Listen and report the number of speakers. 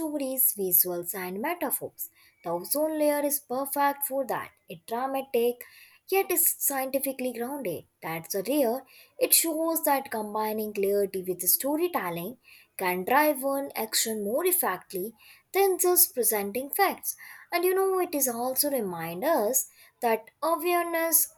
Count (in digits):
1